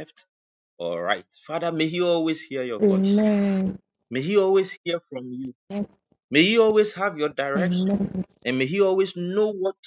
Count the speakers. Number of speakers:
2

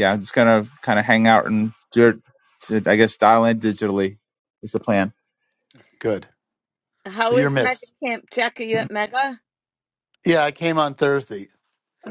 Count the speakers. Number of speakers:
3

